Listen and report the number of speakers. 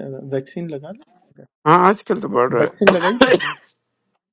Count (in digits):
2